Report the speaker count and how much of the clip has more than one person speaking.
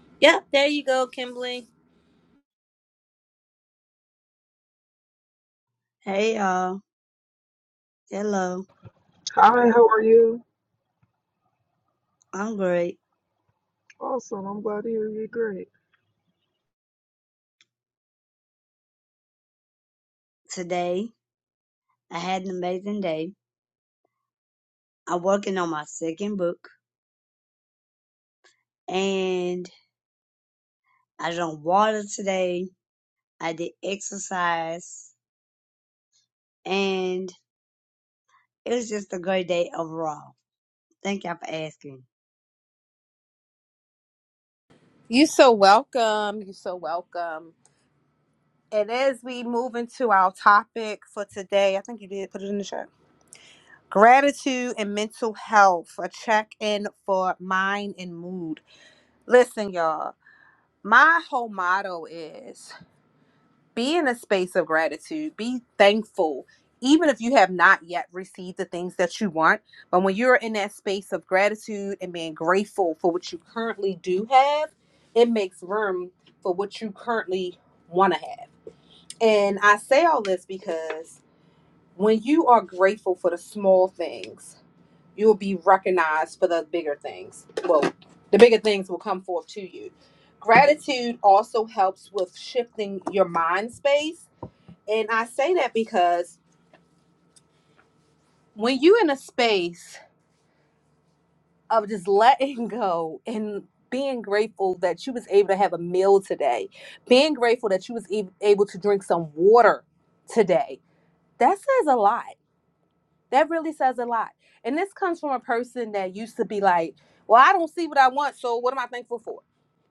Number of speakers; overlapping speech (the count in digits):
3, no overlap